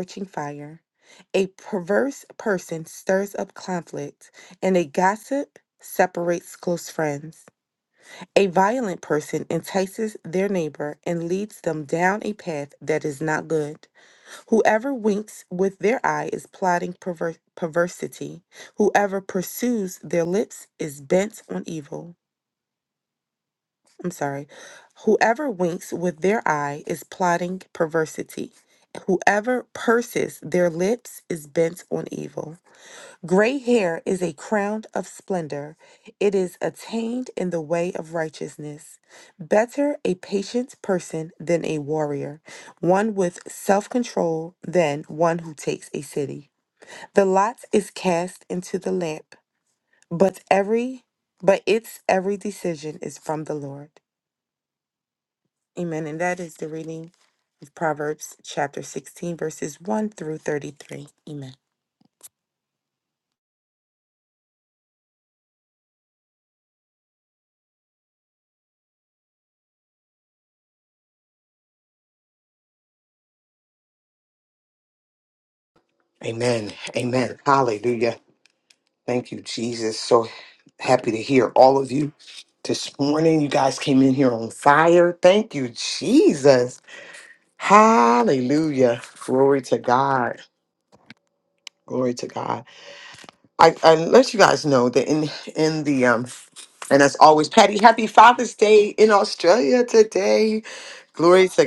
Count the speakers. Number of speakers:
2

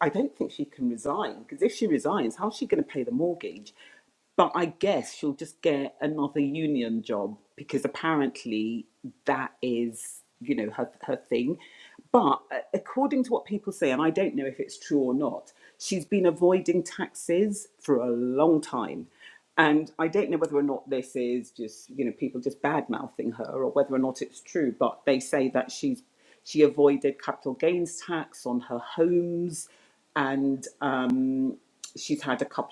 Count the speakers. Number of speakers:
1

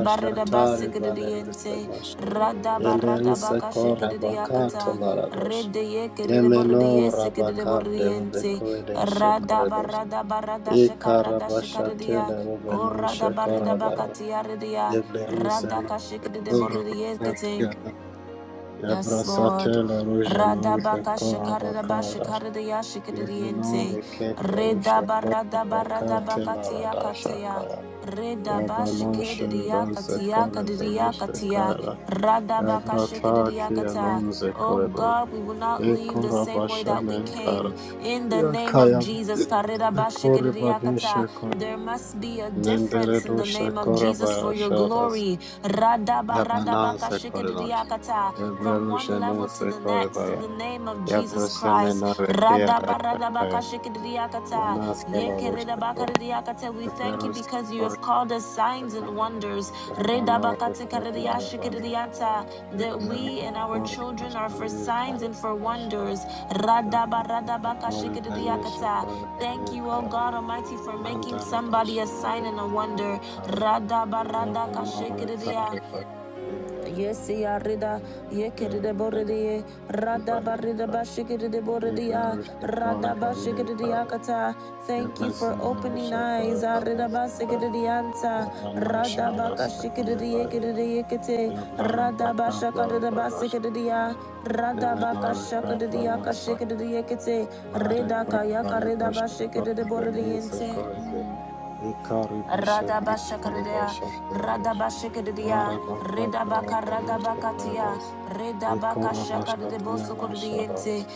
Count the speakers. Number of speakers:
2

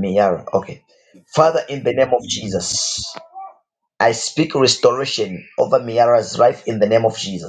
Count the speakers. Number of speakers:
1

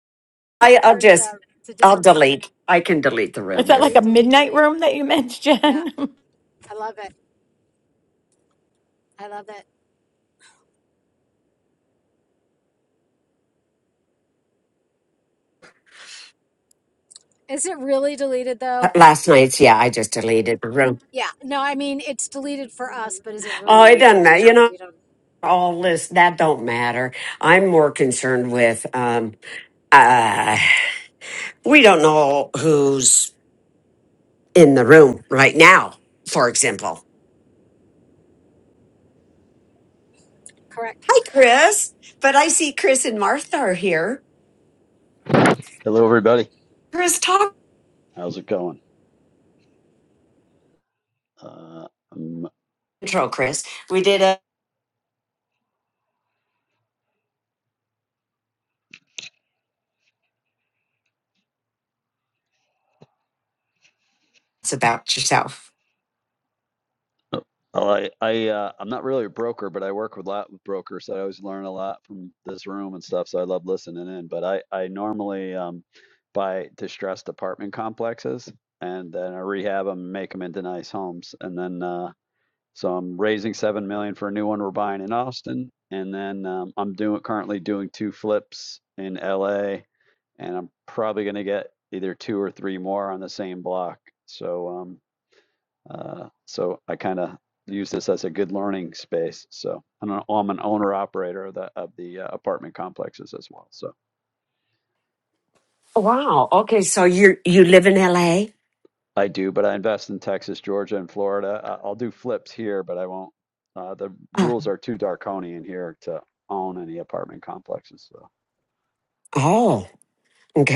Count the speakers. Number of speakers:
4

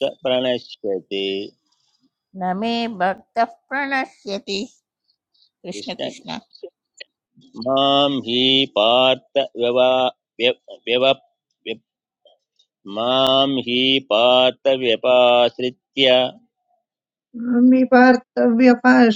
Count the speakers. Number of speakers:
3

